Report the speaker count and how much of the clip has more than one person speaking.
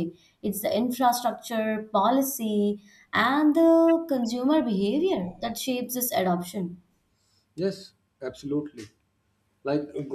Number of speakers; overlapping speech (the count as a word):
two, no overlap